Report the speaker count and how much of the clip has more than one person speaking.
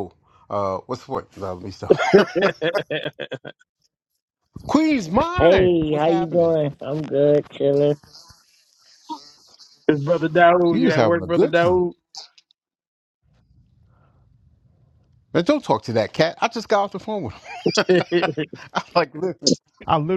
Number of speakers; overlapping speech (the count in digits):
3, about 11%